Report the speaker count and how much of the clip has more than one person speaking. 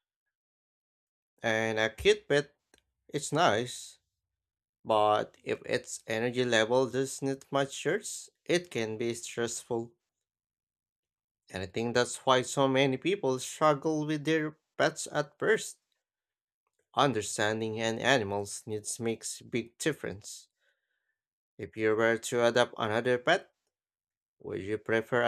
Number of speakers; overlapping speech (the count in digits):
1, no overlap